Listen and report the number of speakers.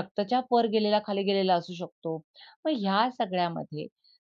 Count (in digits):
1